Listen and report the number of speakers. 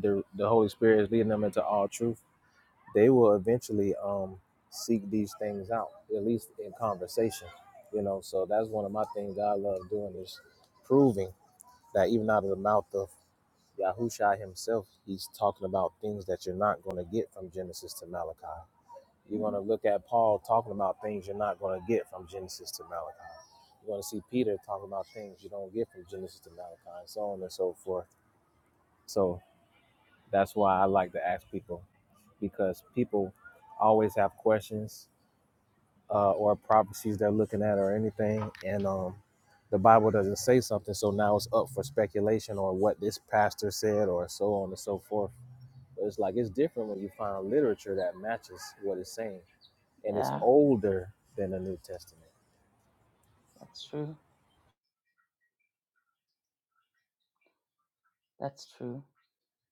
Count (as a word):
two